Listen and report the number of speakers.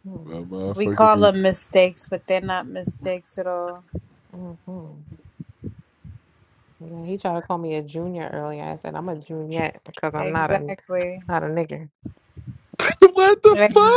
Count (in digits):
3